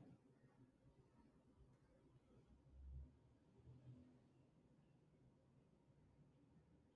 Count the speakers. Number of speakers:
zero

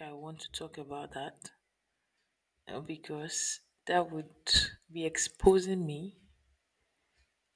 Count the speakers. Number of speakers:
one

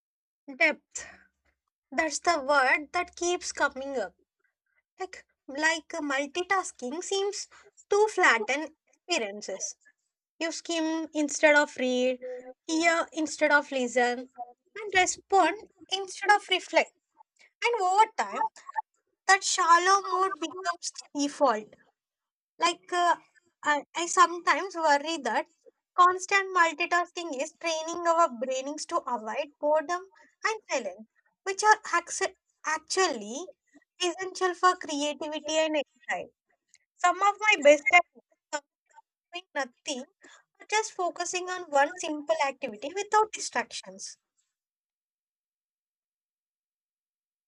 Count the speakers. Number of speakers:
one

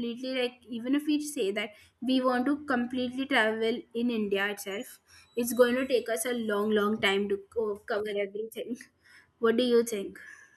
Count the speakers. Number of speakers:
one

